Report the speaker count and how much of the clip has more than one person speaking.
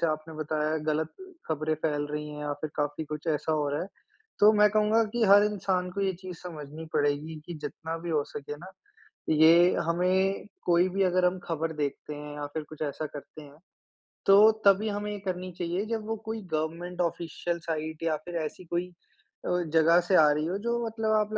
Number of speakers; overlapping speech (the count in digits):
1, no overlap